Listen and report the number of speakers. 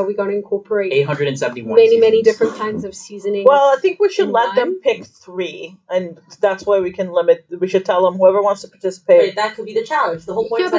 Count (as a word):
four